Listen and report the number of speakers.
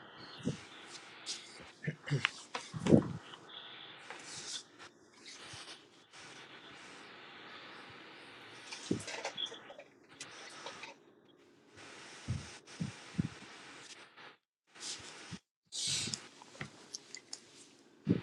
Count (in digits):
0